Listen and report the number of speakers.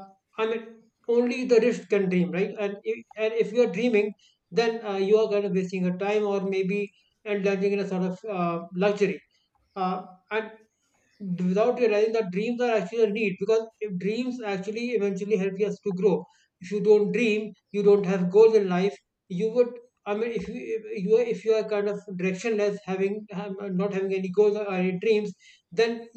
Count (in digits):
1